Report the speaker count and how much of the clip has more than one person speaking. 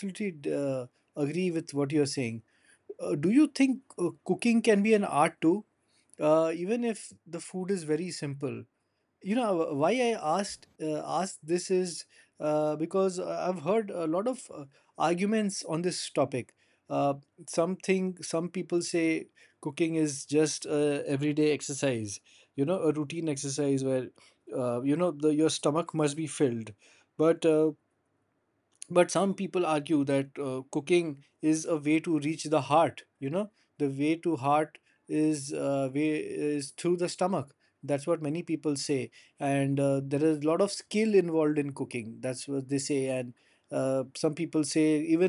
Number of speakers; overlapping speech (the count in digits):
1, no overlap